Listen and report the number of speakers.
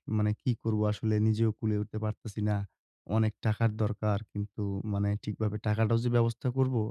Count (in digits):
1